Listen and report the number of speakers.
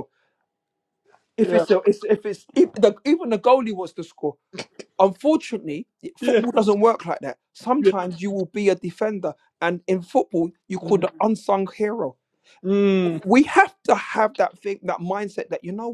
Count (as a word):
two